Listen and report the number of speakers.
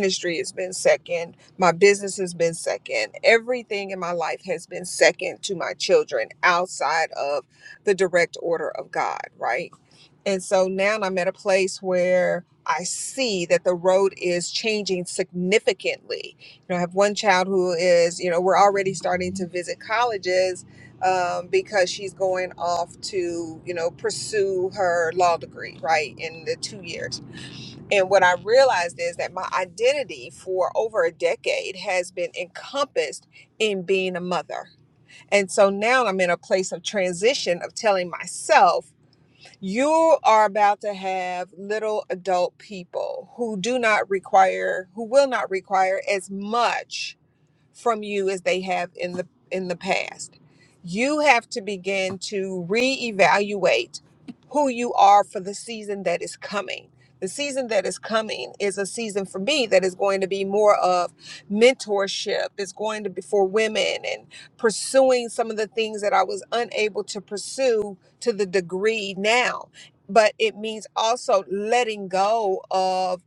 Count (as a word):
one